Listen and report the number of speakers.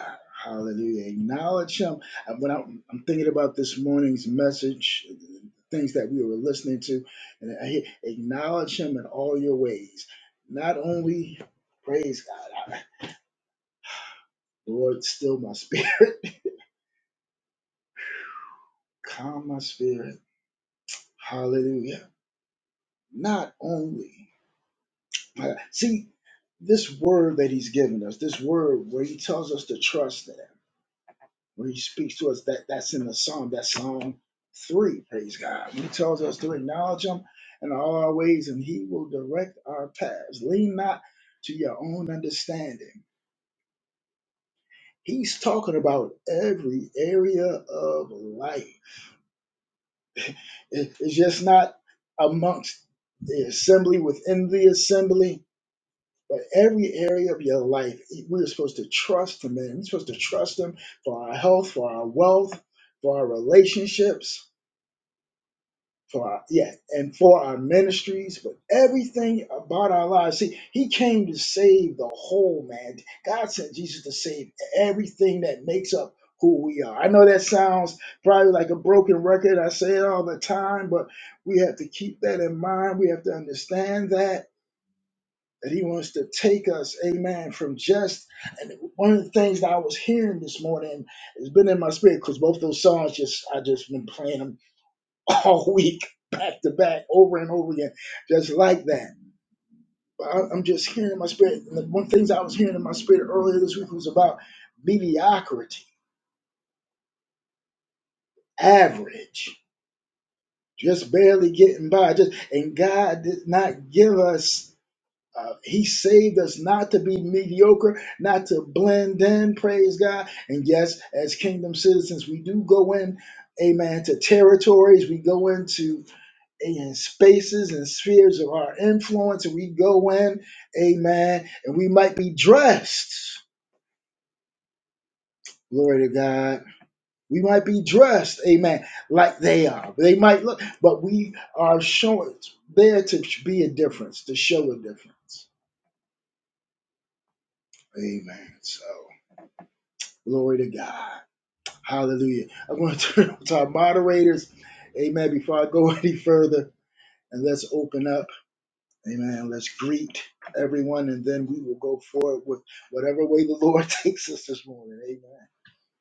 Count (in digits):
1